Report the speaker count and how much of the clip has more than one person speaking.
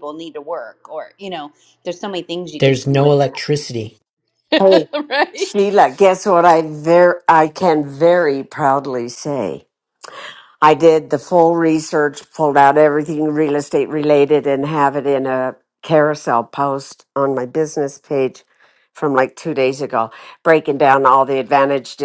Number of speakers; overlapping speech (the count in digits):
3, about 5%